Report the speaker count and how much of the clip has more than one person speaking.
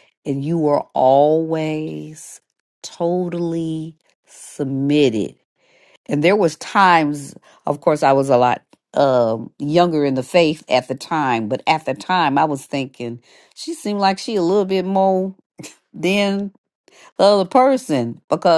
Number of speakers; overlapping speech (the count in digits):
1, no overlap